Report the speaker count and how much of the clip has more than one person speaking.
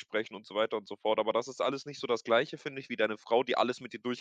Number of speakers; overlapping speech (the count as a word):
one, no overlap